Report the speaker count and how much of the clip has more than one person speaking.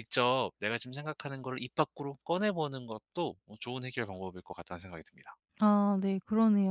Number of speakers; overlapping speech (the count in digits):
2, no overlap